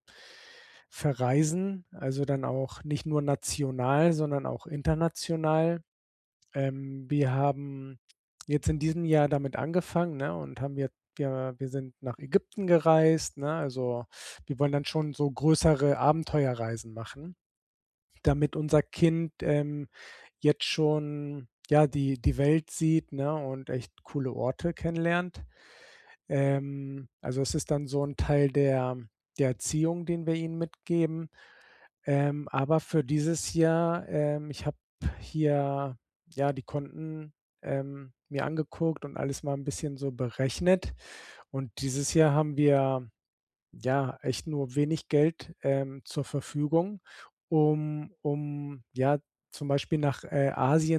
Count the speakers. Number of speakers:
one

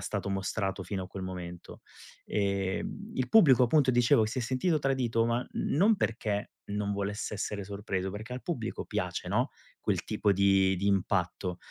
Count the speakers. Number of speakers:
one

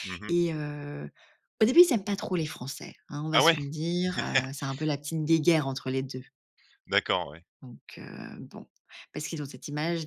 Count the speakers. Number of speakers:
two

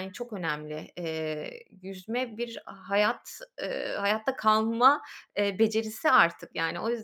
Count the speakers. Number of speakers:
one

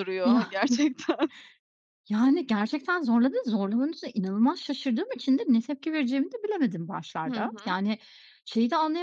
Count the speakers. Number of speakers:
two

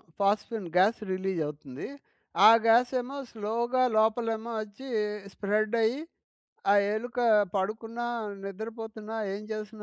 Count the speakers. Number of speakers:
one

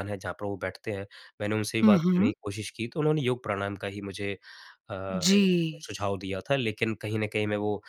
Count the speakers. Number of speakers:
two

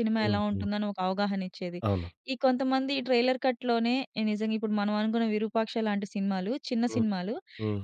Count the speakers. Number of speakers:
two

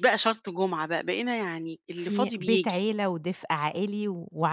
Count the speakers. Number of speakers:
two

